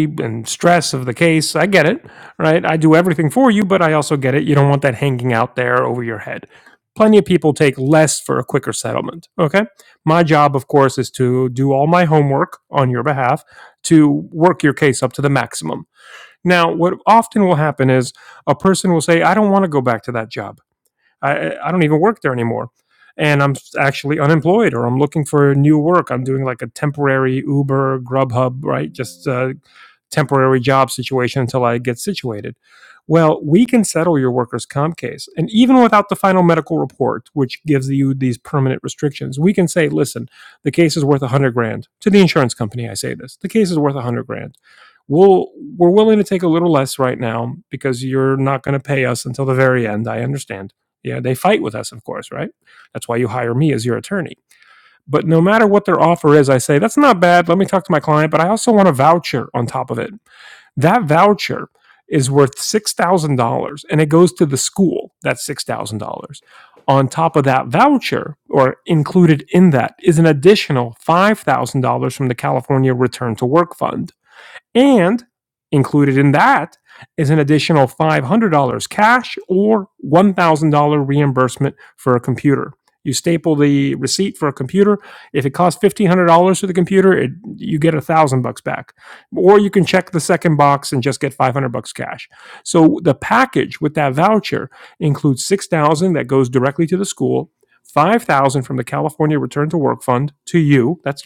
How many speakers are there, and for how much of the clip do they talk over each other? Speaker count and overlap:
1, no overlap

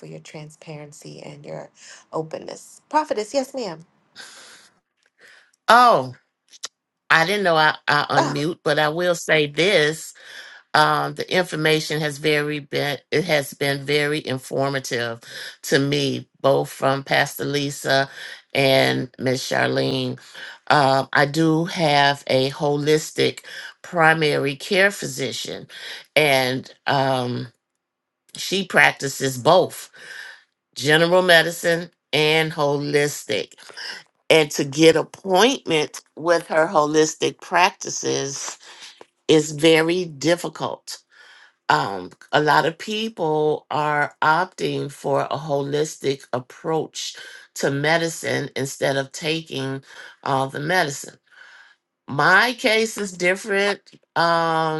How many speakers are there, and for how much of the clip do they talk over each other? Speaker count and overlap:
2, under 1%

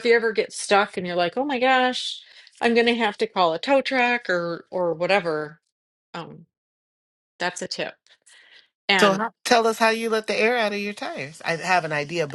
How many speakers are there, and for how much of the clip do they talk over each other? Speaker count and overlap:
2, about 2%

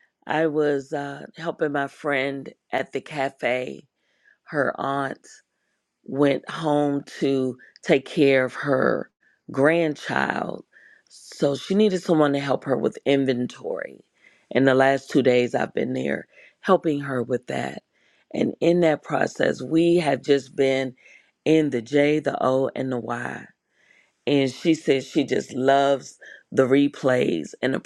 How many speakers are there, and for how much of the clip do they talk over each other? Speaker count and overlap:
1, no overlap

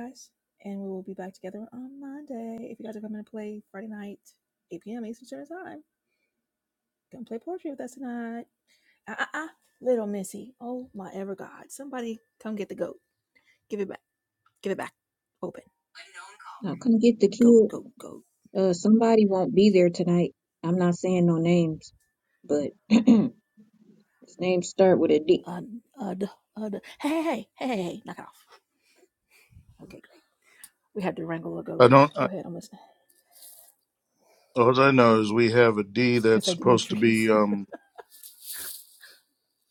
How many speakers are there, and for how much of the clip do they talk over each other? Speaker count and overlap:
3, about 4%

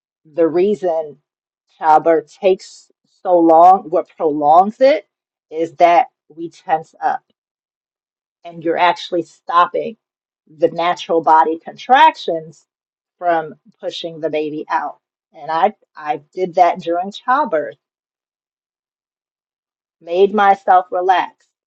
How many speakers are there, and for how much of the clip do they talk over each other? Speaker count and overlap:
1, no overlap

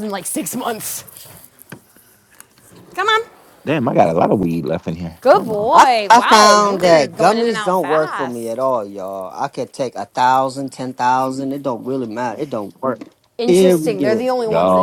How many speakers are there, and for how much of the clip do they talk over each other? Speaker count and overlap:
3, about 28%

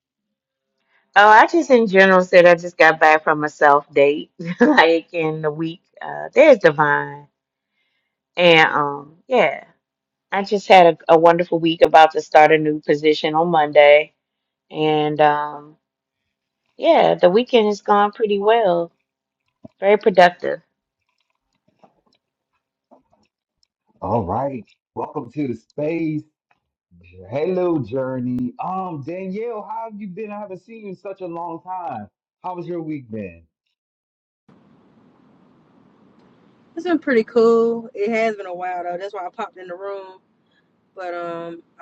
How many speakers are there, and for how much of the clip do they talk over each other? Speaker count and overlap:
3, no overlap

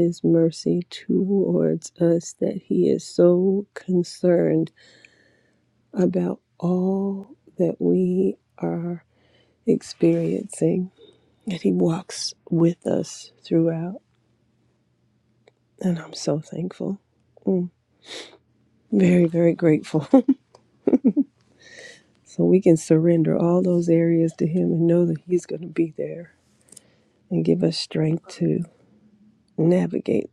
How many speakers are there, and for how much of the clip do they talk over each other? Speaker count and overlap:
1, no overlap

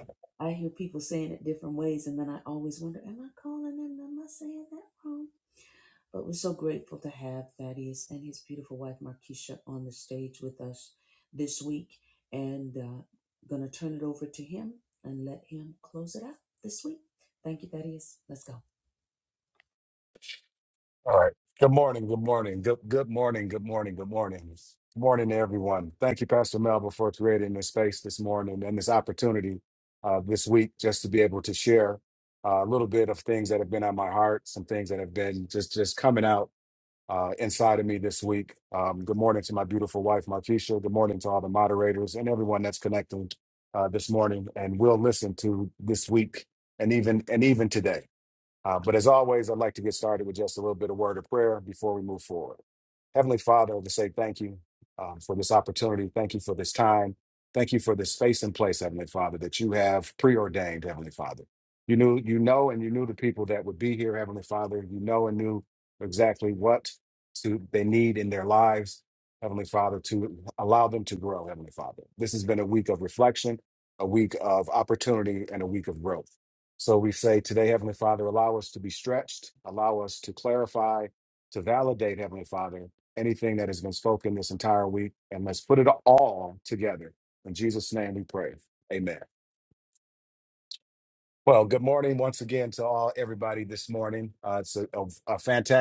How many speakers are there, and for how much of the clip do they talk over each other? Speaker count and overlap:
2, no overlap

